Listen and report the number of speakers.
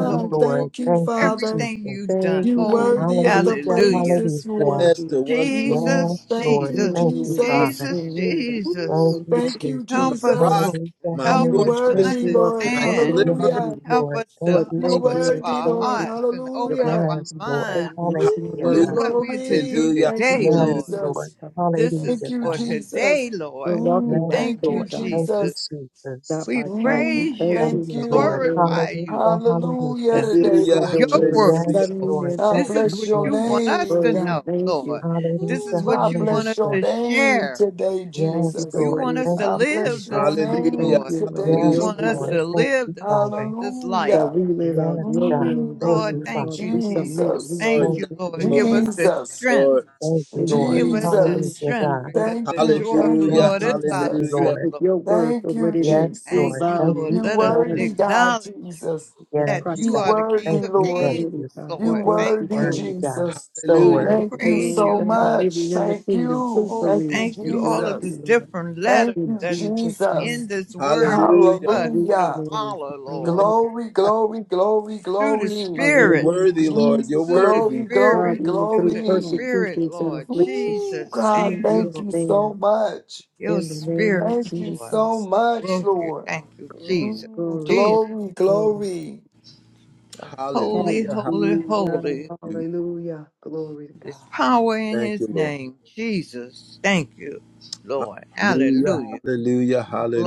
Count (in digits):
5